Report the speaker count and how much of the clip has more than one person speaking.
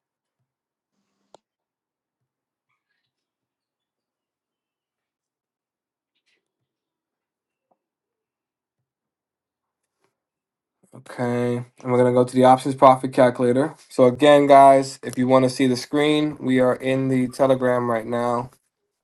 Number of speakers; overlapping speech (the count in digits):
1, no overlap